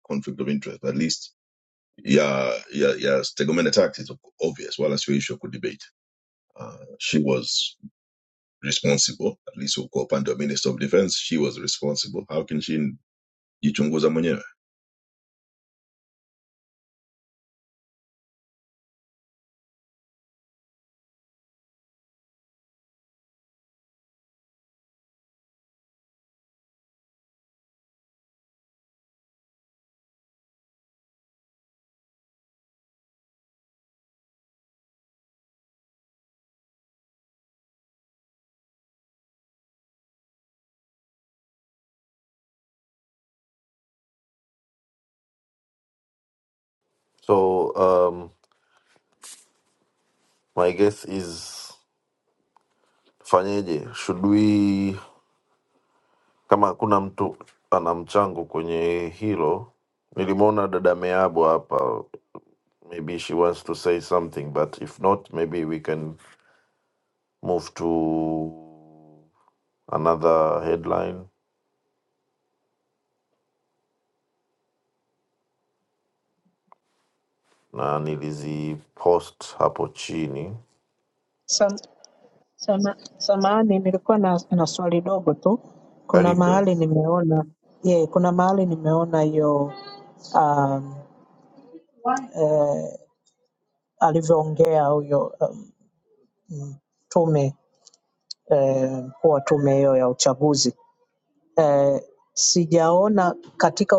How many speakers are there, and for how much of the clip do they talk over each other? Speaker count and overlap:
three, under 1%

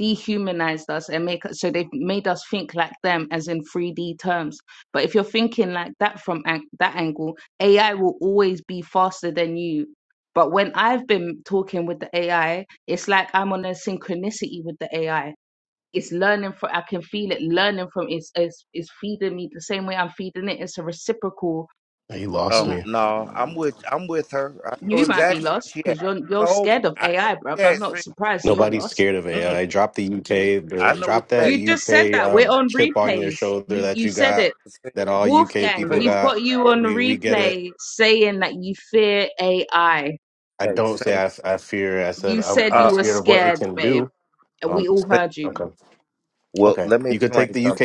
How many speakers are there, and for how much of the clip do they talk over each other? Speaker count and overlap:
three, about 29%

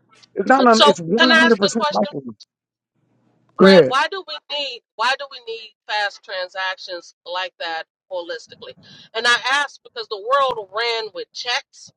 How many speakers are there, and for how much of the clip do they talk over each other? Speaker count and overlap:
two, about 14%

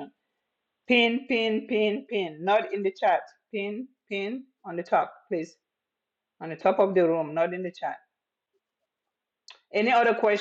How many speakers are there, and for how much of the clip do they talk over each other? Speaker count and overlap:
one, no overlap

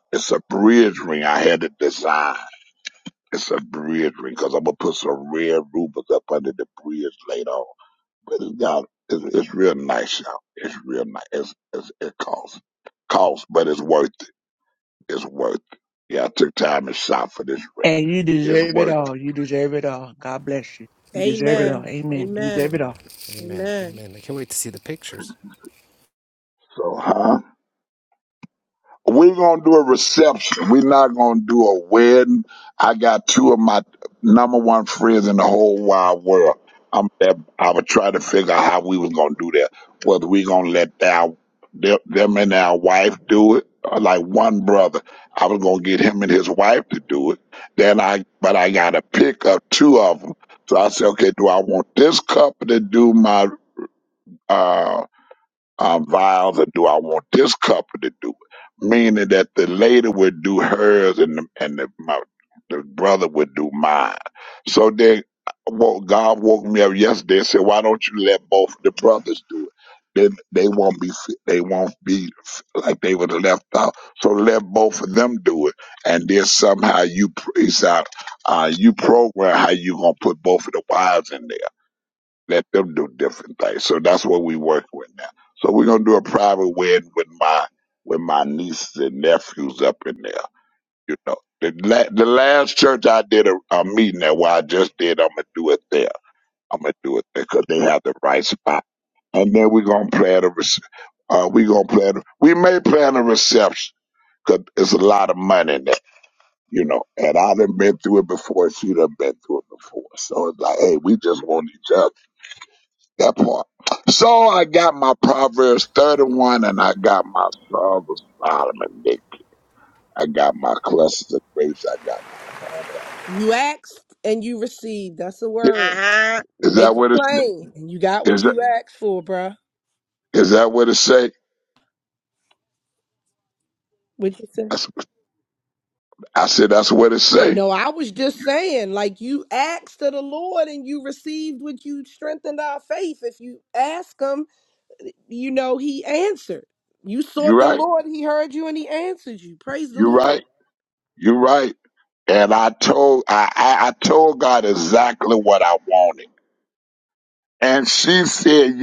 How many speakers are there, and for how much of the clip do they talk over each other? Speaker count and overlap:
four, about 3%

